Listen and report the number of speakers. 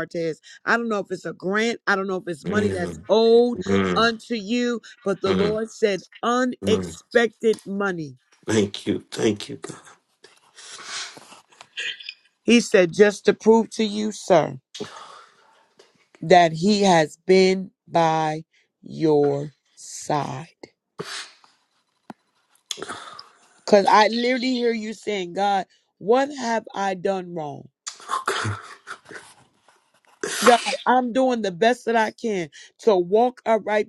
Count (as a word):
two